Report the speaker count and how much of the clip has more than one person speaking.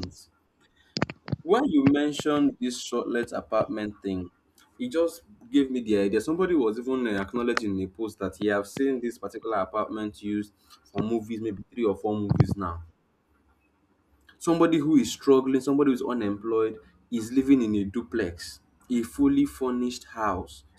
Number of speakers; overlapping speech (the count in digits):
1, no overlap